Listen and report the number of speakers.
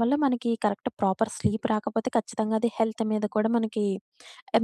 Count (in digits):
1